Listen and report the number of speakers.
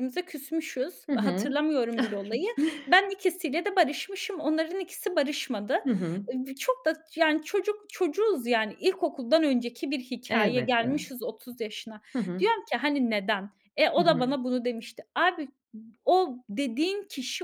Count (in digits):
2